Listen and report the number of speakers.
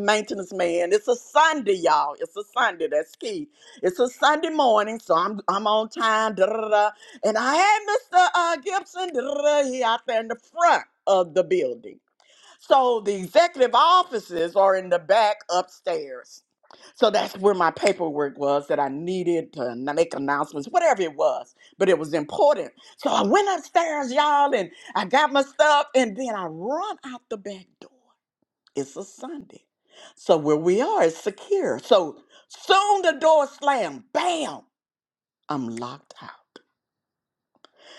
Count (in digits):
1